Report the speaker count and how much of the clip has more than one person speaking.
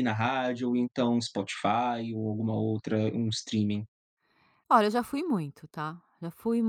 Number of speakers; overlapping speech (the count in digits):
2, no overlap